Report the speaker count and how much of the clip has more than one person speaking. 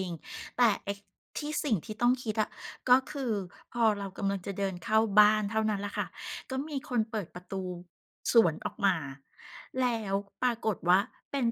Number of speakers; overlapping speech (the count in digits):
1, no overlap